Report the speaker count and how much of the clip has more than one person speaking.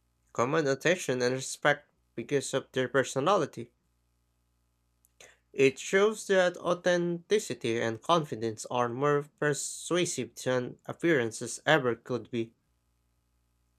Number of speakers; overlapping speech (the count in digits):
1, no overlap